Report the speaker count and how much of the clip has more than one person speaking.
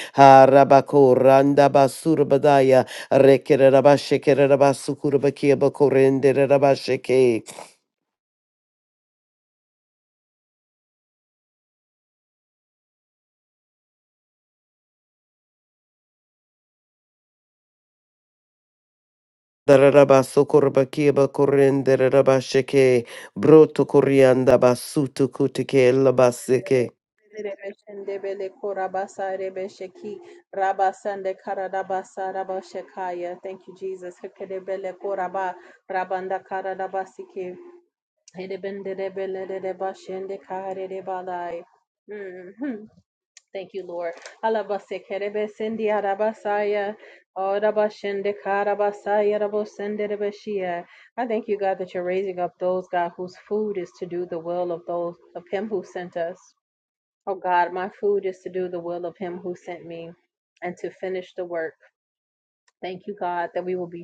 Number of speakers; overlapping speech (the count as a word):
two, no overlap